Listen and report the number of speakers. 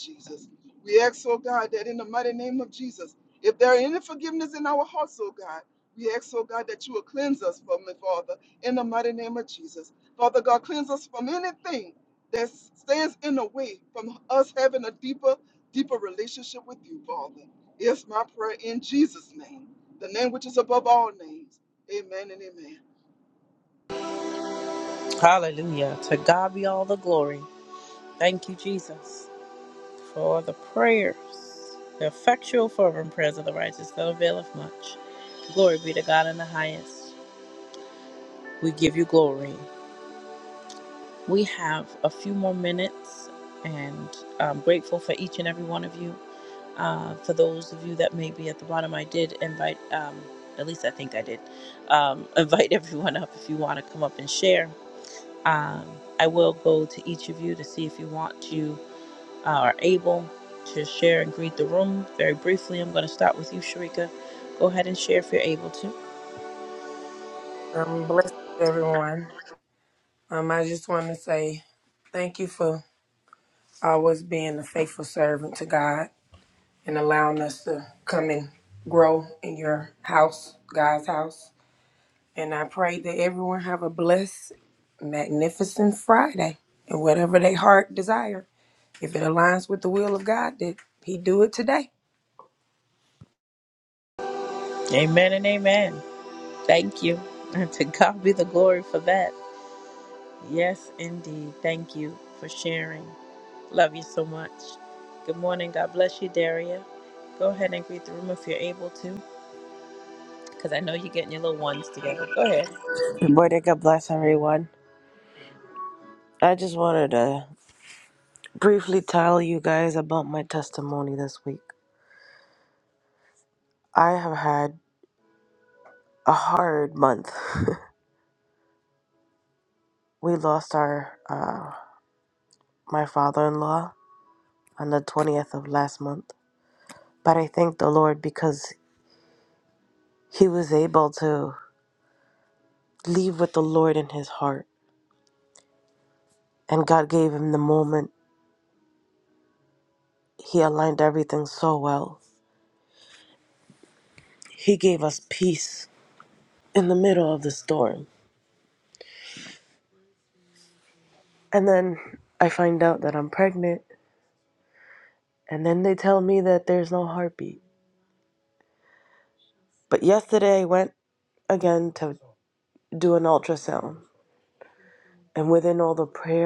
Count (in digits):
4